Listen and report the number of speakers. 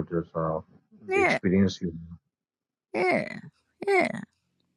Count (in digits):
2